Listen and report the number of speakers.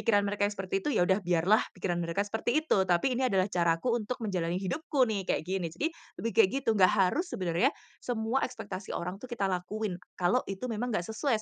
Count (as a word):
one